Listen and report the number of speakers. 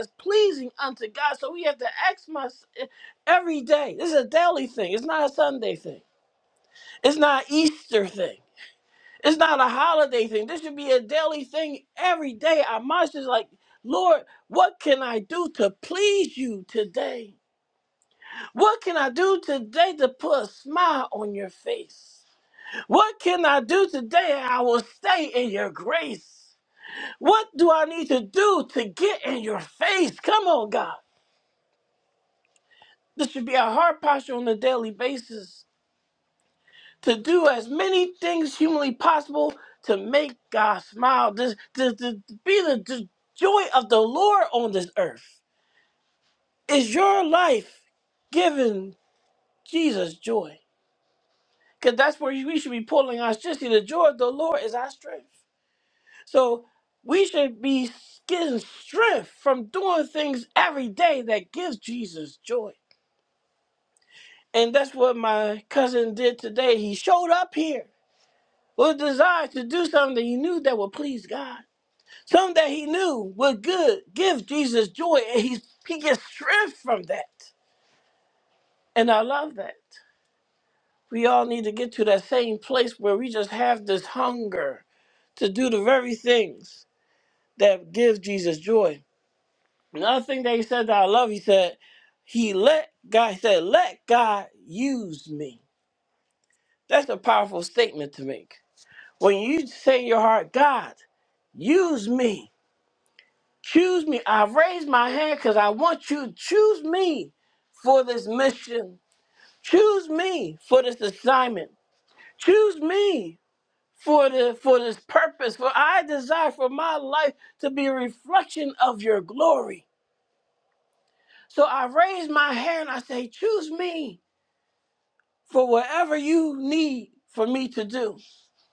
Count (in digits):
1